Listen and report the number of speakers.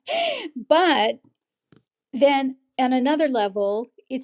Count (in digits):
1